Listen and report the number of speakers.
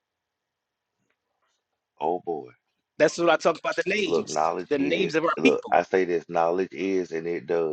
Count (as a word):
two